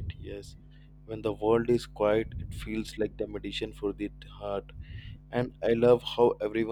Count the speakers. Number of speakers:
1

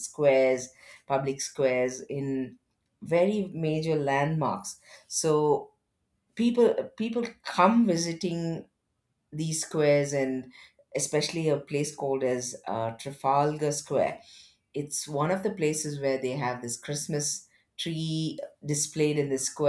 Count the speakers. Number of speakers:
1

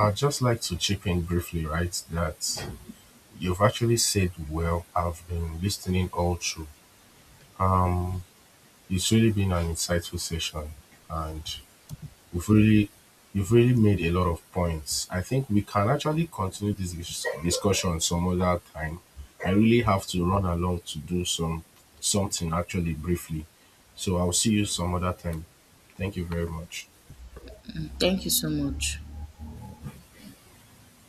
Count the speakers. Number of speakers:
2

